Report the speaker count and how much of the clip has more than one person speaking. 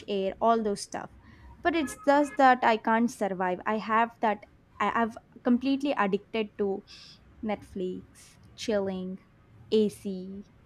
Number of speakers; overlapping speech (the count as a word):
one, no overlap